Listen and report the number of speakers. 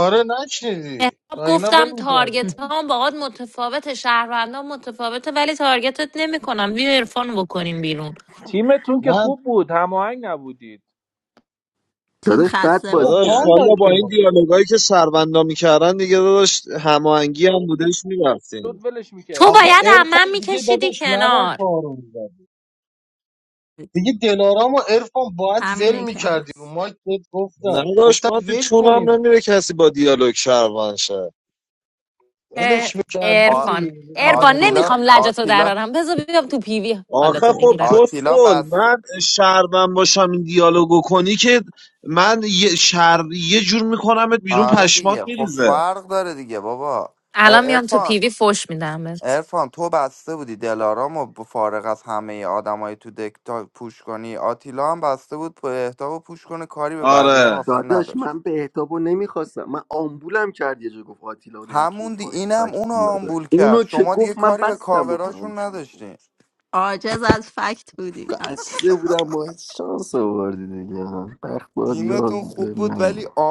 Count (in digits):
7